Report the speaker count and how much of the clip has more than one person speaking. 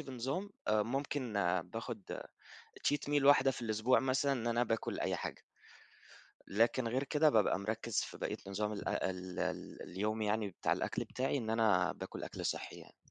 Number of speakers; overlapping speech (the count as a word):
one, no overlap